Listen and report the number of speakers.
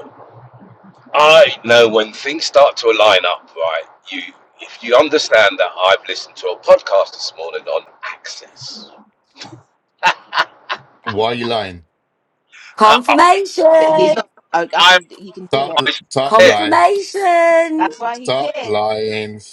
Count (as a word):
four